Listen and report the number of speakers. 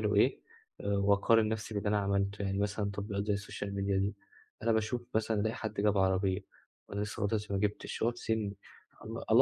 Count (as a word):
one